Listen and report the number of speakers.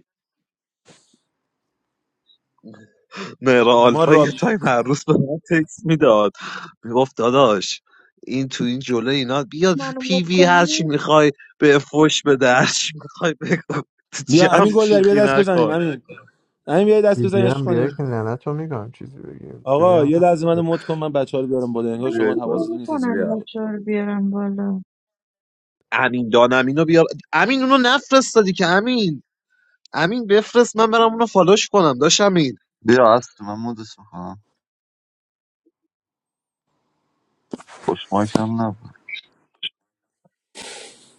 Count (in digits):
5